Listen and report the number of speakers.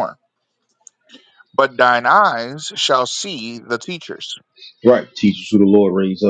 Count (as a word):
two